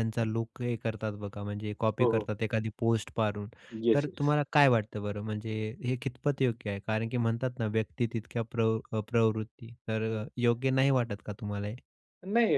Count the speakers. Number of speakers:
2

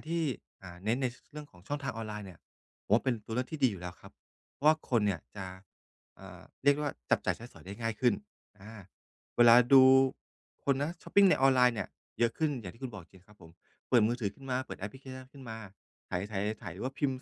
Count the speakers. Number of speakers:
1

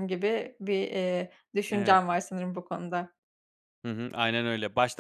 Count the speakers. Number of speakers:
2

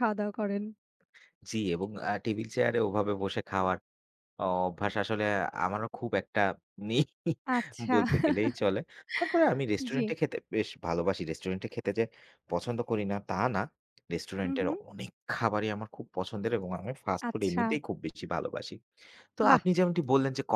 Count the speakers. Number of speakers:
2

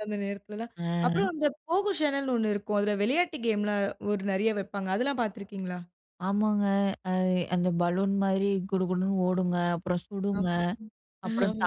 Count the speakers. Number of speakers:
2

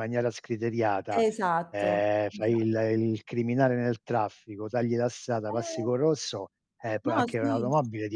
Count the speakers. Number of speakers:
2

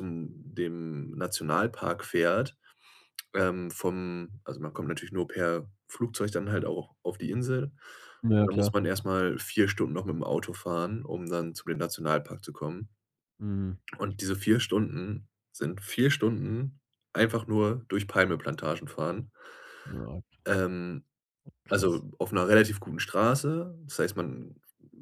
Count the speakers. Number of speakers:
2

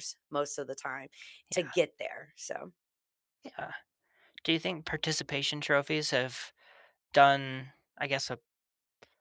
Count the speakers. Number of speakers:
2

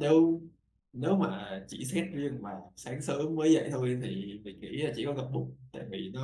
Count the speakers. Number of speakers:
1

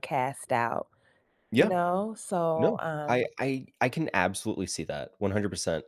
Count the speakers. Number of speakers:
2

